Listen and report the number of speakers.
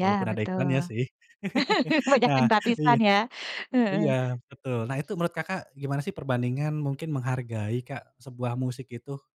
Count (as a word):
two